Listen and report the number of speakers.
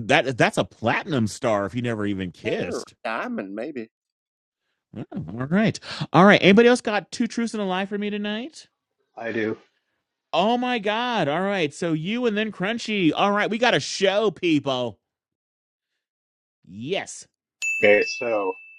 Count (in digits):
3